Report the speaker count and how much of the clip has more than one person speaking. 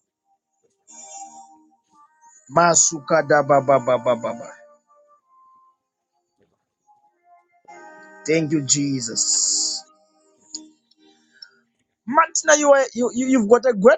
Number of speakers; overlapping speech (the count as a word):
one, no overlap